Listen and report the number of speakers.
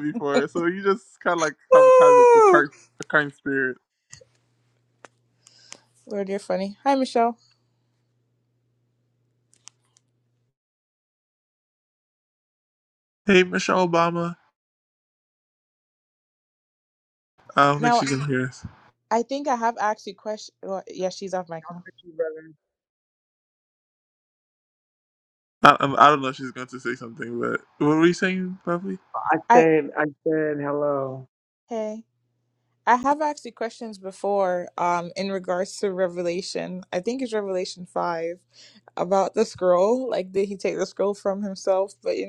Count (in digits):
3